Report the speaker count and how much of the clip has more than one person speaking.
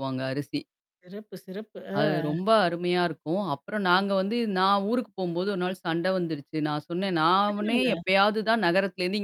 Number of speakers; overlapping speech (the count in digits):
2, about 7%